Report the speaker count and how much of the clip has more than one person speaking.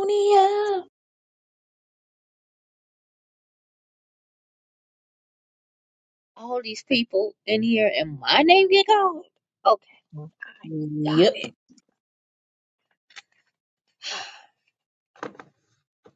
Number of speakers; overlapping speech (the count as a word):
two, about 3%